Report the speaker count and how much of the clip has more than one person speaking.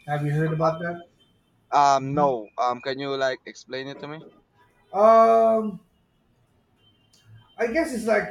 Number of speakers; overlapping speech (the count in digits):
2, no overlap